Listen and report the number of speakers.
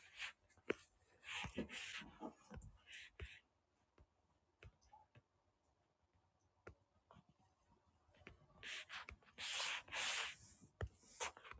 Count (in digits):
0